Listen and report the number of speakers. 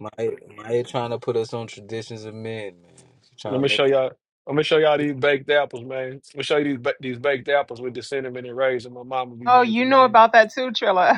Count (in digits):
3